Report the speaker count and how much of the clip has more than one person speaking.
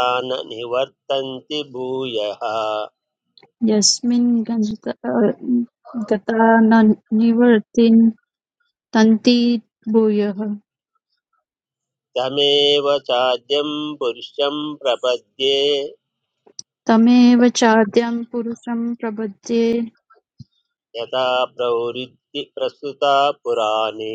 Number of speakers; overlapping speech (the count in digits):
2, no overlap